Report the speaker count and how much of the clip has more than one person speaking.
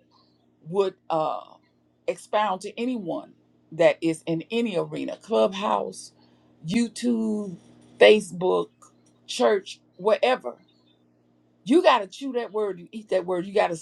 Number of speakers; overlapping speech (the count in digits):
1, no overlap